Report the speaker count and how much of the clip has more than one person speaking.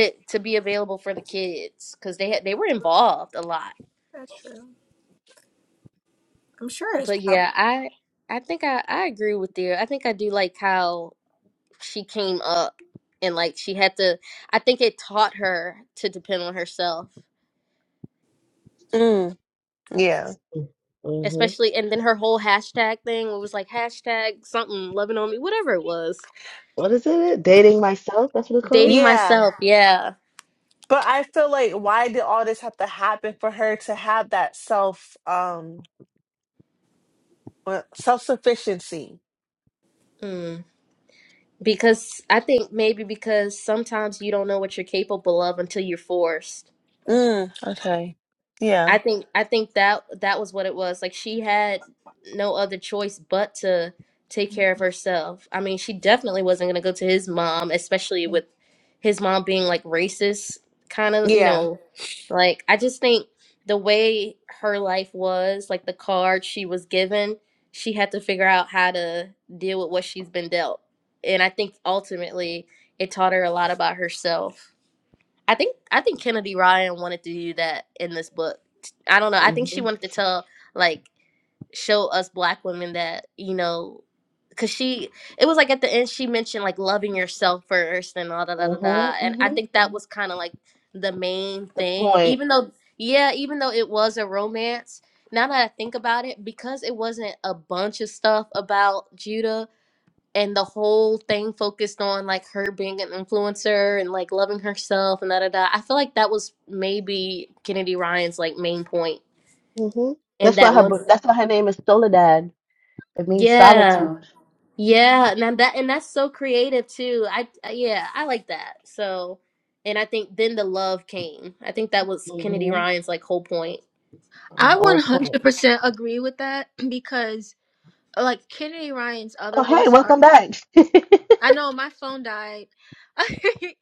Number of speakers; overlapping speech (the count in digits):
5, about 7%